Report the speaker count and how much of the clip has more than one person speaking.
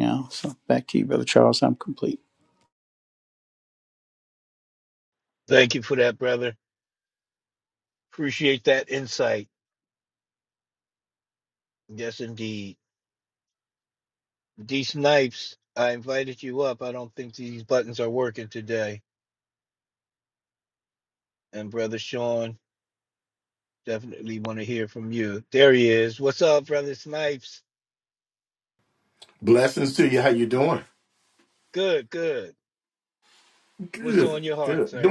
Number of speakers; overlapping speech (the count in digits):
3, about 3%